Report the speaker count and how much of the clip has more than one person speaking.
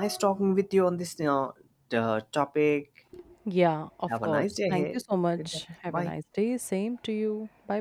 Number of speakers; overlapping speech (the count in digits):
2, about 22%